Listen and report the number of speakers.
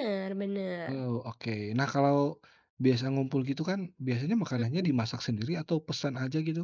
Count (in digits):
2